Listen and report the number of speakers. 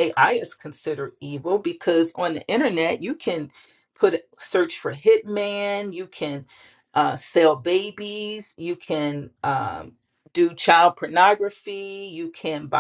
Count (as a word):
one